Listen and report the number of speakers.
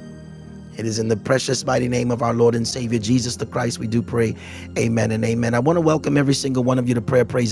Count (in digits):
1